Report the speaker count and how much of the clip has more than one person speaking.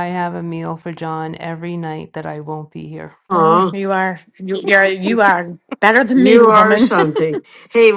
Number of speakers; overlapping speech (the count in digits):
3, about 15%